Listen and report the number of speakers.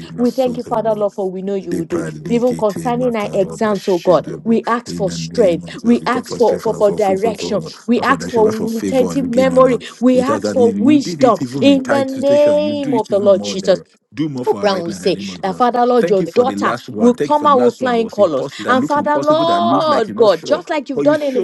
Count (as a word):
two